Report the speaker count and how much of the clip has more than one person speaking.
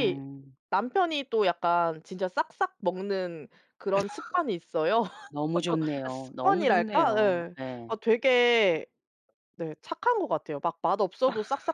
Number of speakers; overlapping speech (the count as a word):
two, about 12%